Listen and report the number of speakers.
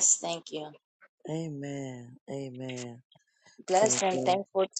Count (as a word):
two